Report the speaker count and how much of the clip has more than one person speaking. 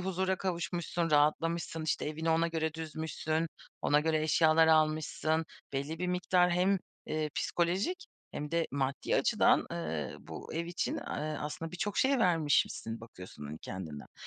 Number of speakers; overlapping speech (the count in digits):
1, no overlap